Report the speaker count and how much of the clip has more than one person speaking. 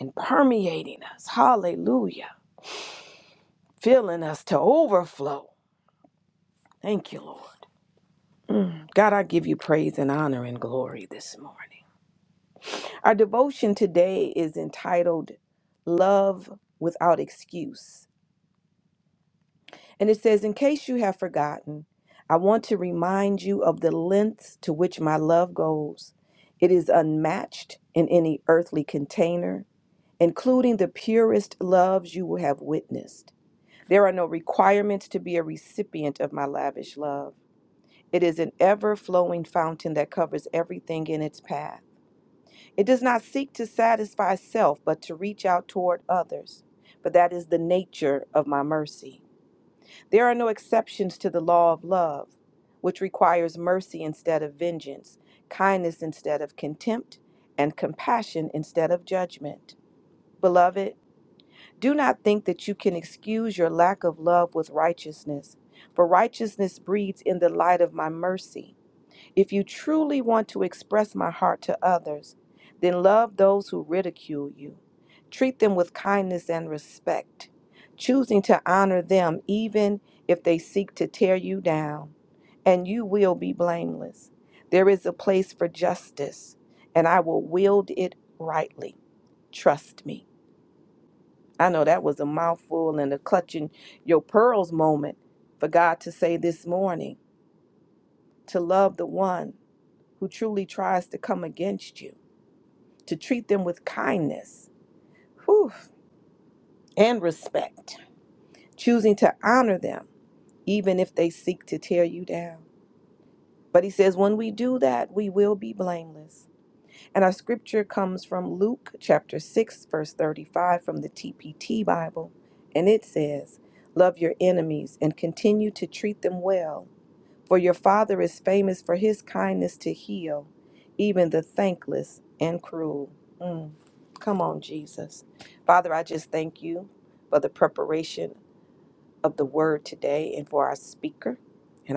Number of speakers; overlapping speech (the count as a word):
one, no overlap